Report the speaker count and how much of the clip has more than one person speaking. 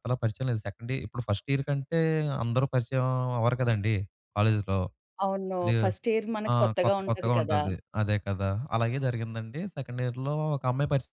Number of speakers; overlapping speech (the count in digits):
2, about 13%